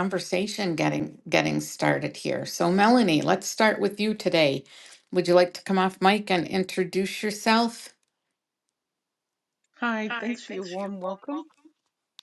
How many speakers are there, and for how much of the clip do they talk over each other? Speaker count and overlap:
two, no overlap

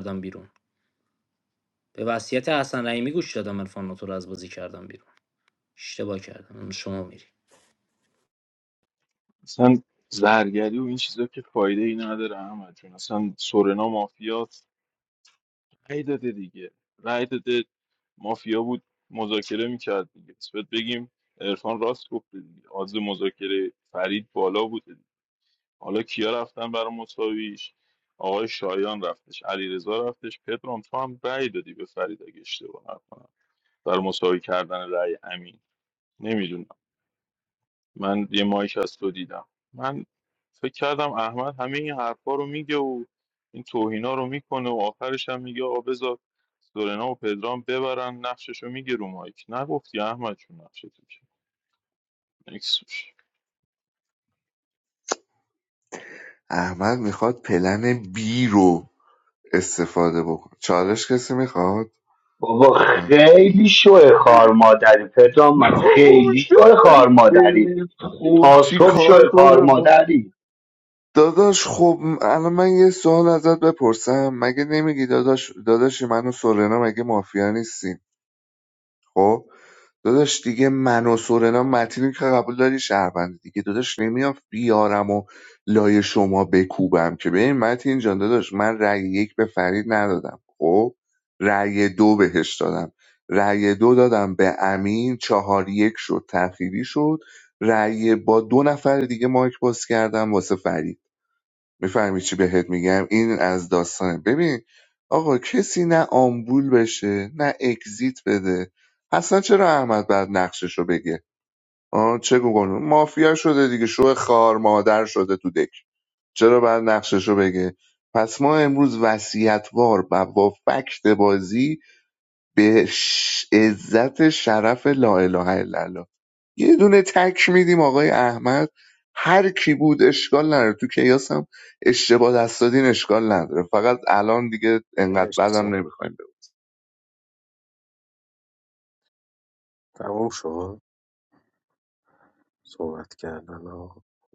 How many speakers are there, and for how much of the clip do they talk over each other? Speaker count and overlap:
five, about 3%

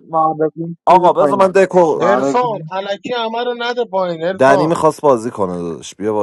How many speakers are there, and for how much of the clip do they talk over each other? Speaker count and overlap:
three, about 25%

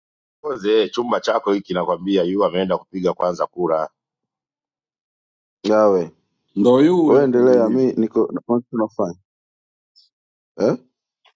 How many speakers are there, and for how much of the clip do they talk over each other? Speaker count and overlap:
three, about 6%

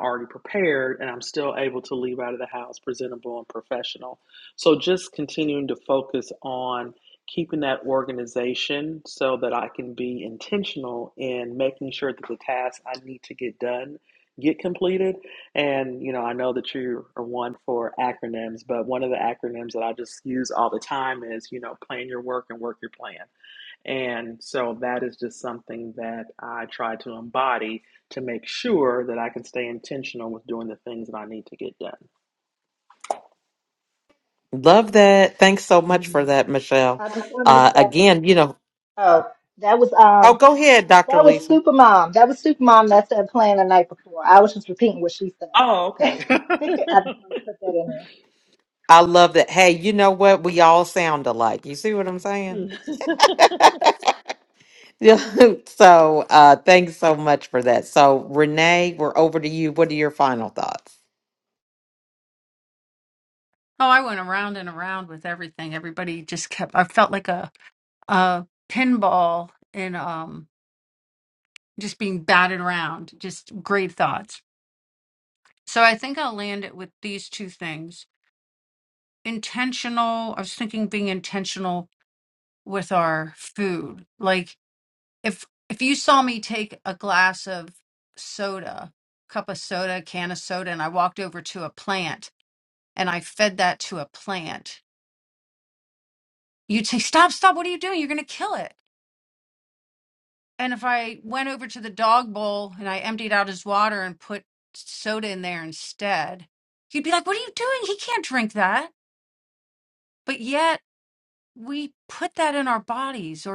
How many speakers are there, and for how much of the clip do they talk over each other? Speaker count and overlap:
four, about 1%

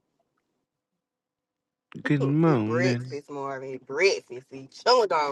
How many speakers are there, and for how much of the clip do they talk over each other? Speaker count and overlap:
two, about 11%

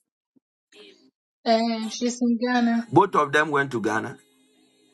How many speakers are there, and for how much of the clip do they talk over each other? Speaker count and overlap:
two, no overlap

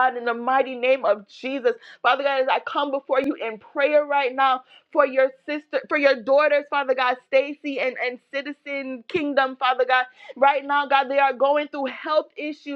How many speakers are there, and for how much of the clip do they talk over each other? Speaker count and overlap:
one, no overlap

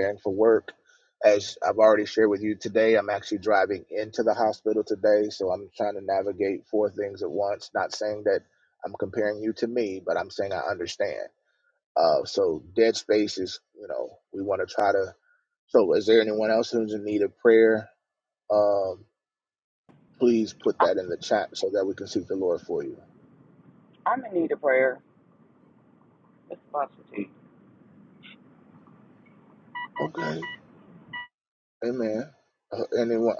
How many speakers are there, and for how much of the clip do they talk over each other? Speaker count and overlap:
two, under 1%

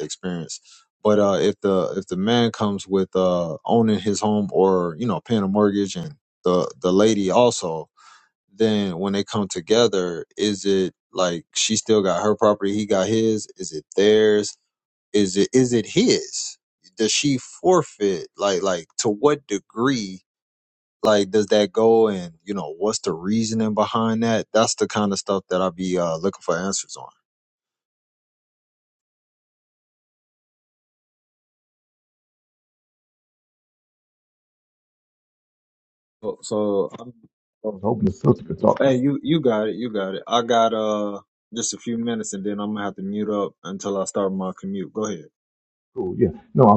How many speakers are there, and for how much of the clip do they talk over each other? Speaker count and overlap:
two, under 1%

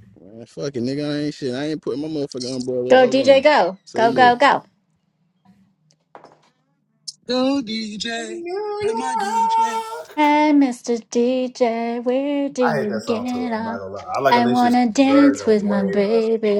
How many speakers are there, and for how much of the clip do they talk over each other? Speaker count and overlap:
four, about 33%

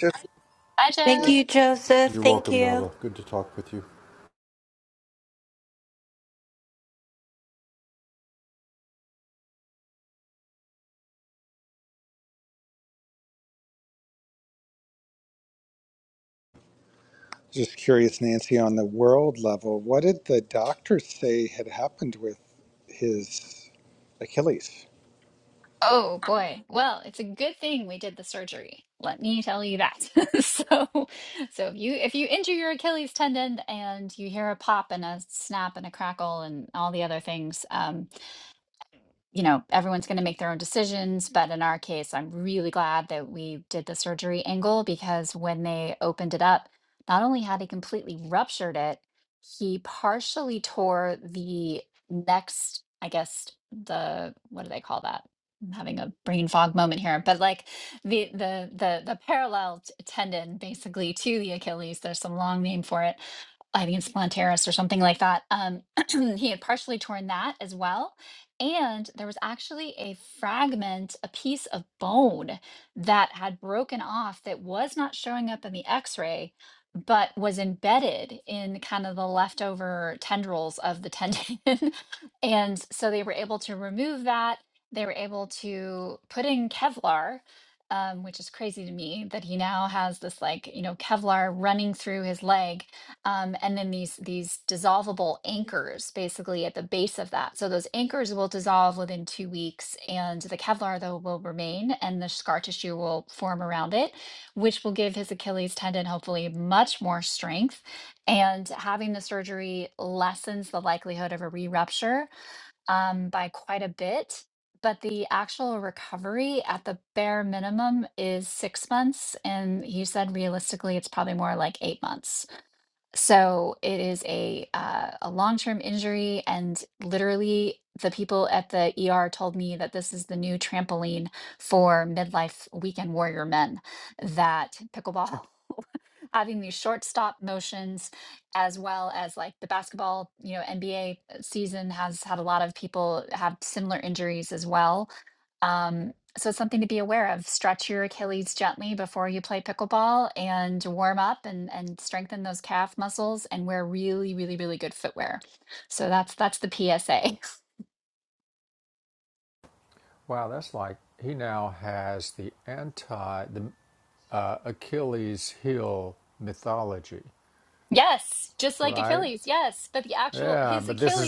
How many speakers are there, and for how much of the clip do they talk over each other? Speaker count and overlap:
five, about 1%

